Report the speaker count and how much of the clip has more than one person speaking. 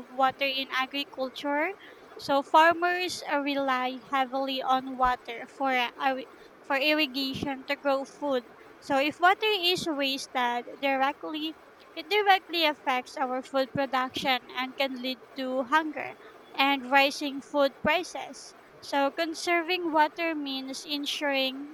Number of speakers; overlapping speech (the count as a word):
one, no overlap